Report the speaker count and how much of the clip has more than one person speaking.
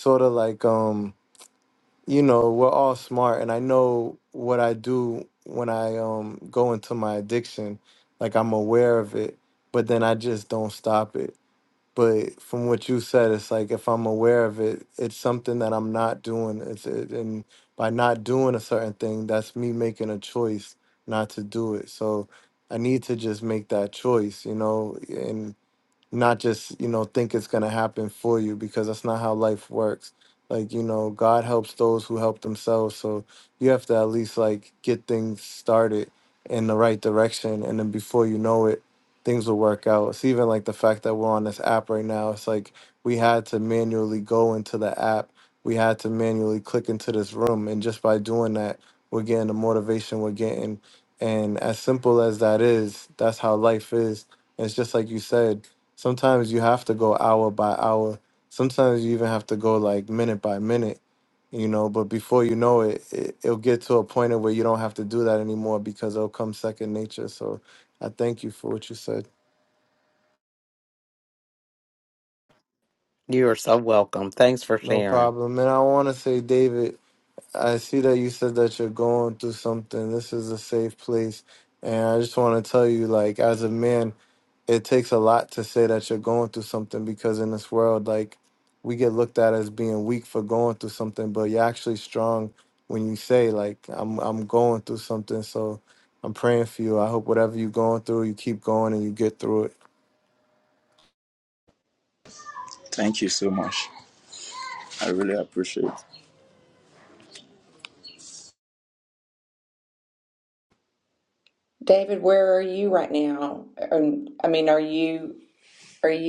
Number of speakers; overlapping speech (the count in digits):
4, under 1%